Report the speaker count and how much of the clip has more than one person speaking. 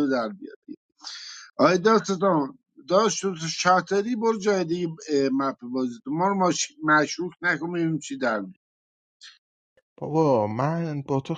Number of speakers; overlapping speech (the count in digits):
2, no overlap